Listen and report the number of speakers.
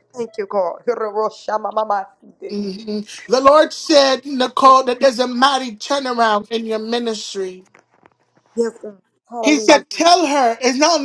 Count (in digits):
2